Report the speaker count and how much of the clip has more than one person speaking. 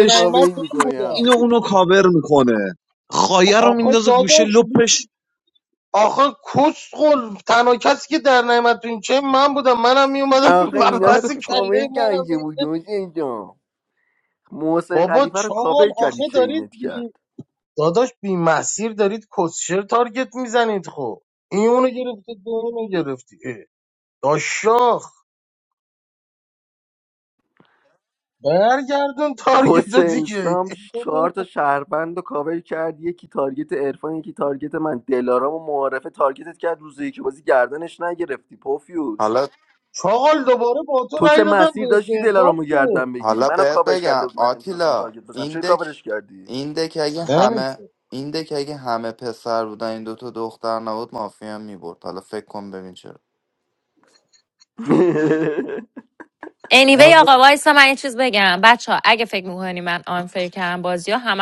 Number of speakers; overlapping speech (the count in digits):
5, about 19%